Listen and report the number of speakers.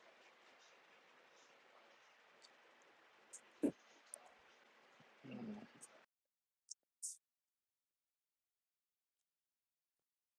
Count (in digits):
0